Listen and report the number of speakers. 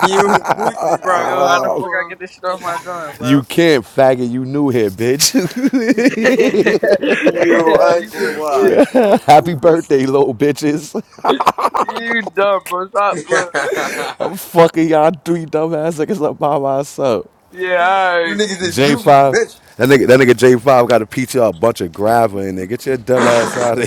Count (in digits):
3